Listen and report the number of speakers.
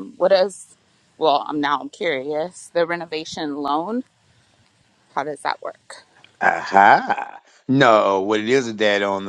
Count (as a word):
two